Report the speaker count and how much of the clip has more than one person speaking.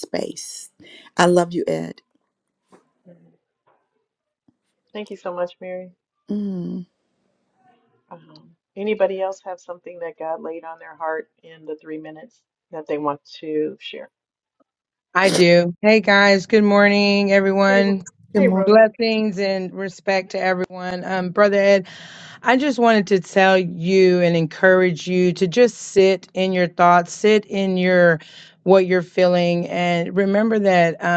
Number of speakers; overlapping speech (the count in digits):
3, about 3%